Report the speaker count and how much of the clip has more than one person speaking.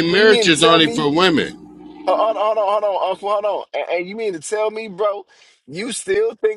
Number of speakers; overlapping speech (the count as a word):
two, about 16%